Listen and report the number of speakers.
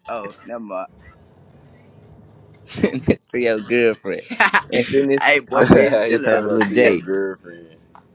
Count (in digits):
3